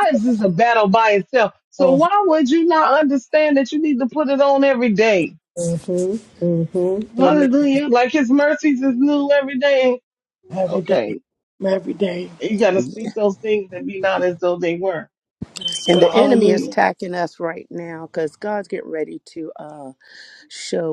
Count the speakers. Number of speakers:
3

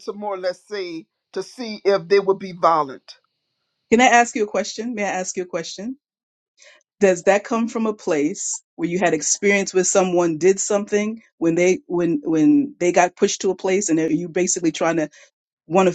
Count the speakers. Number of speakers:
2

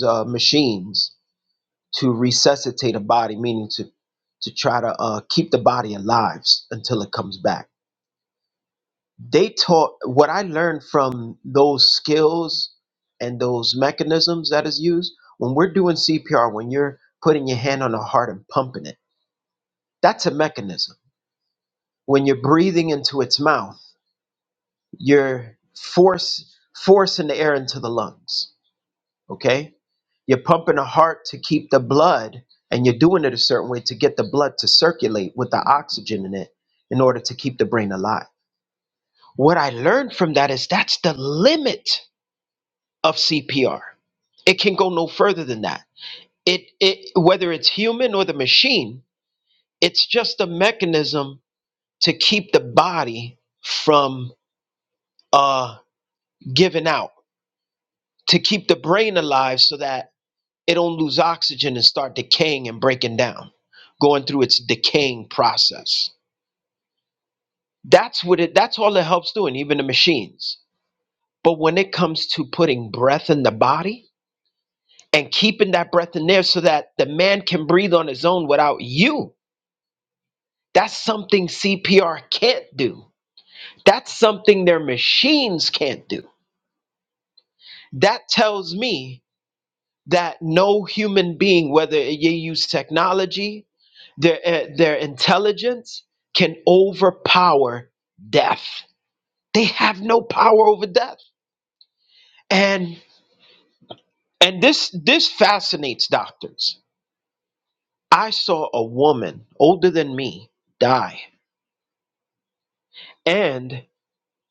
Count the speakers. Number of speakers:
1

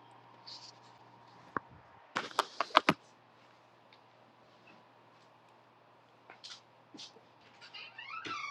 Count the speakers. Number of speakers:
0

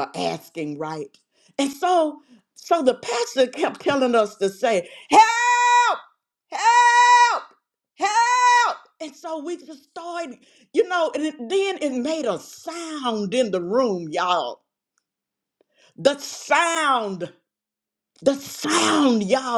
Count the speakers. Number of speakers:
1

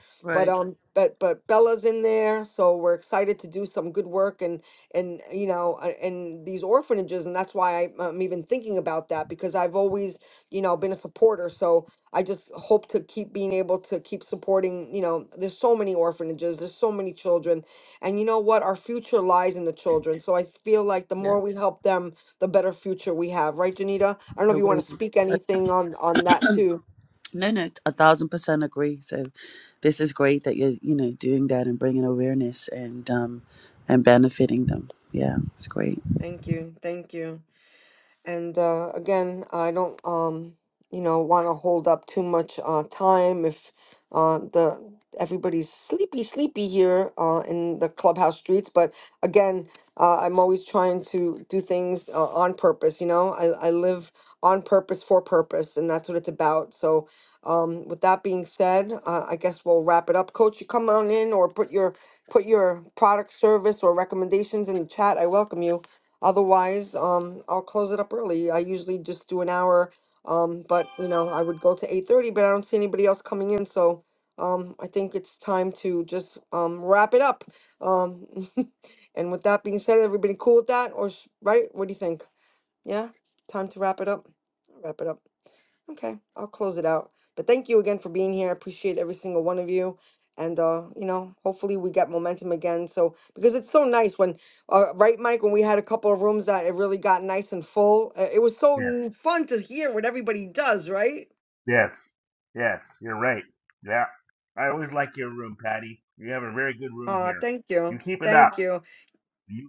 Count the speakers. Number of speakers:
3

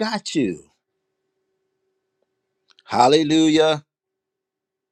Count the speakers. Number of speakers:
1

